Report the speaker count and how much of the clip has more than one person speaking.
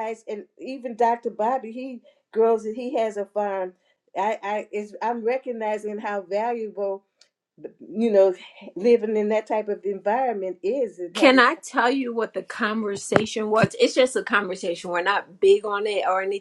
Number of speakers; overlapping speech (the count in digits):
2, about 2%